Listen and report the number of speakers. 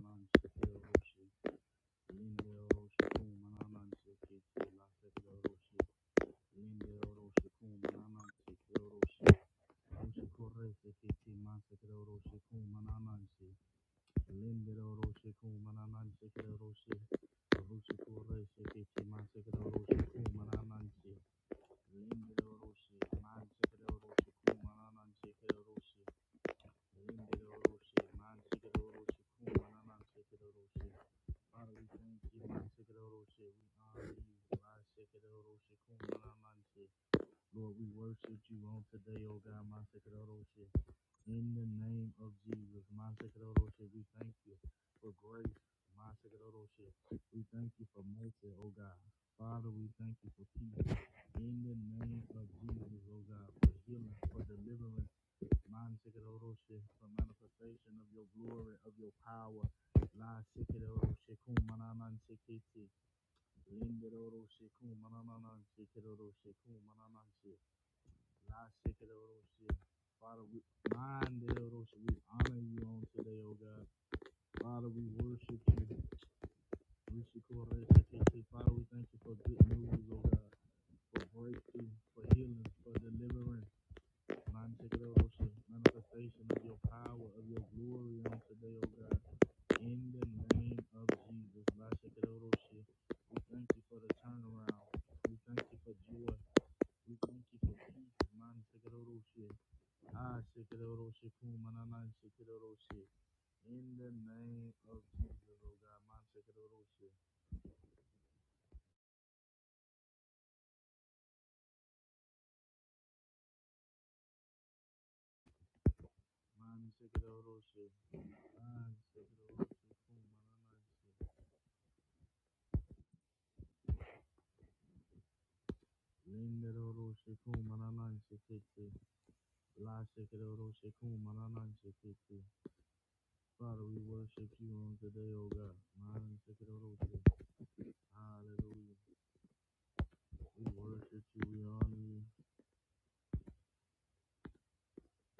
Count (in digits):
1